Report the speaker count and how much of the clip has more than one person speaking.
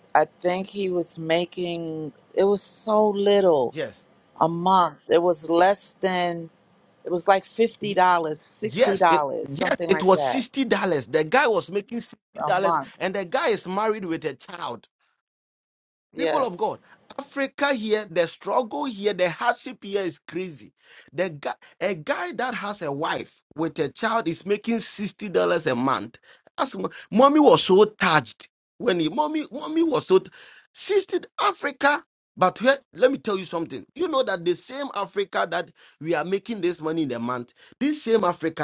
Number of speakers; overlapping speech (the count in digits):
2, about 7%